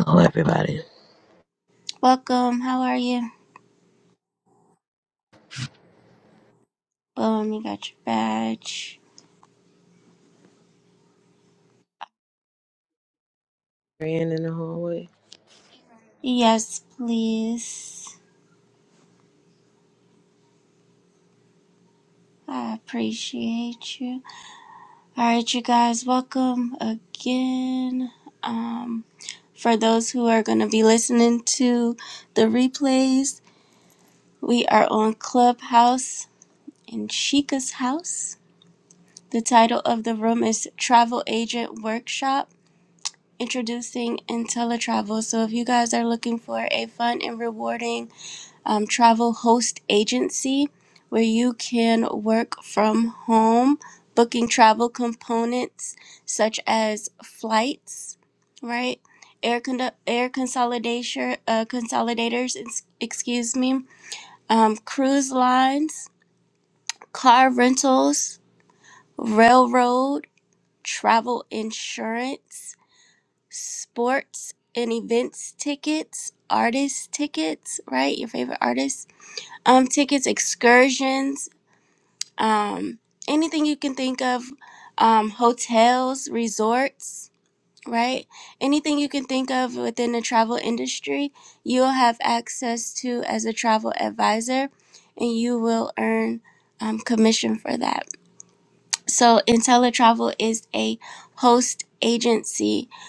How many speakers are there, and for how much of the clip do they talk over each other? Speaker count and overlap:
two, no overlap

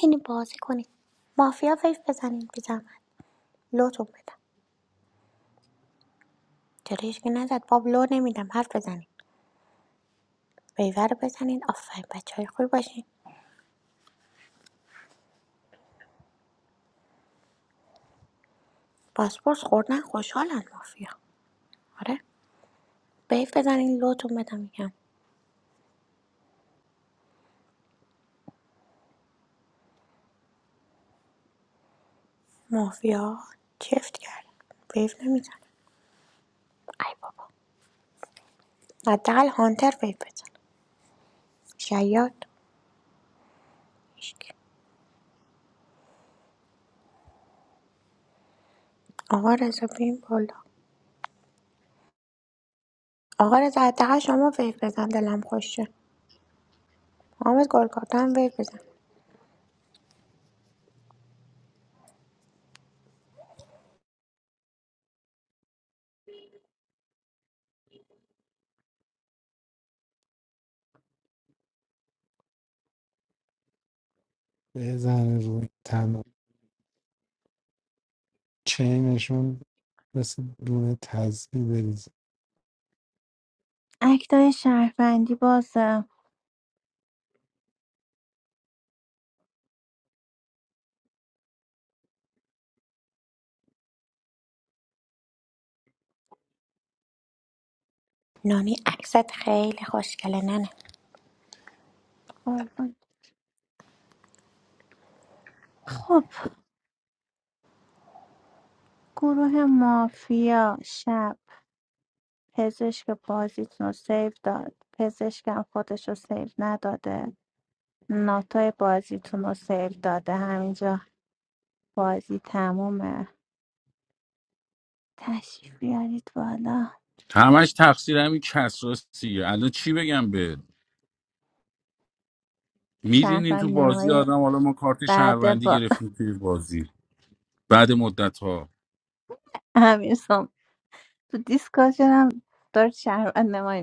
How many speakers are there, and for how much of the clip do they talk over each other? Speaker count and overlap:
four, about 1%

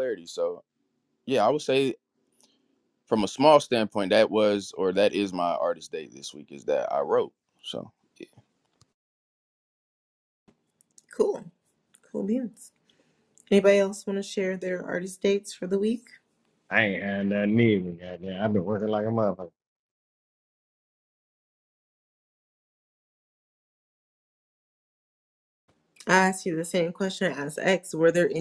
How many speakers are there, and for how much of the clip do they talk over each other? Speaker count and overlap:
three, no overlap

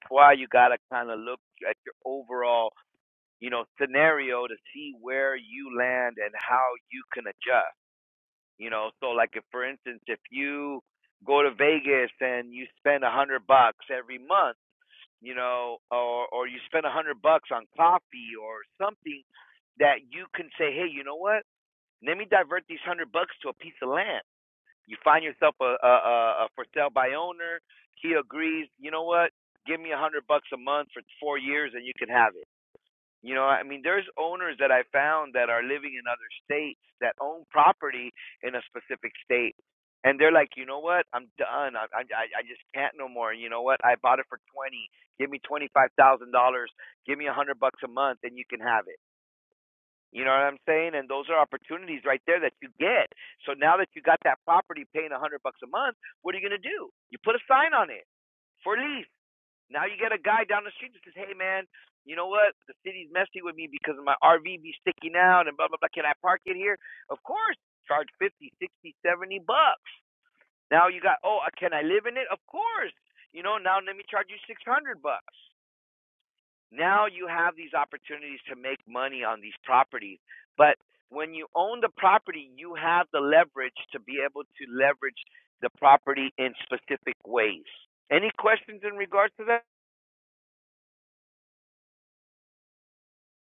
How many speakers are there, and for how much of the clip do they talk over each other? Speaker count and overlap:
one, no overlap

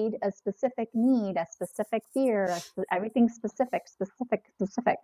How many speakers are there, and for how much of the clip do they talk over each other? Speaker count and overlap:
one, no overlap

